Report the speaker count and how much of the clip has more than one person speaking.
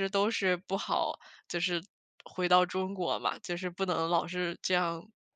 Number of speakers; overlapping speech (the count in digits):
1, no overlap